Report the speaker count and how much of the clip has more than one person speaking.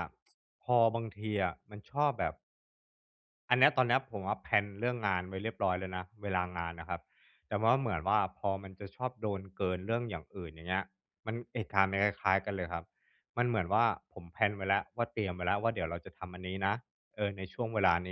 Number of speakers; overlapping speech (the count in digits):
1, no overlap